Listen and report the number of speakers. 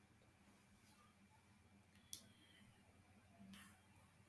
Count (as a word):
zero